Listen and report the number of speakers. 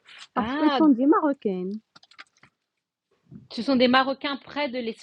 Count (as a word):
two